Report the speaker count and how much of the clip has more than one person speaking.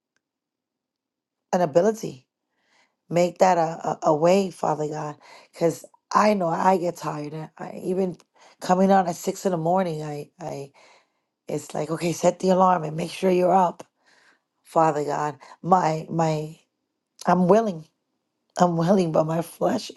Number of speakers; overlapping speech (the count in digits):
1, no overlap